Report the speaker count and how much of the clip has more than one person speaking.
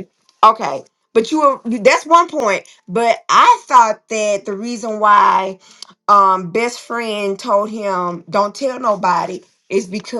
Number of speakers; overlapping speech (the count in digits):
1, no overlap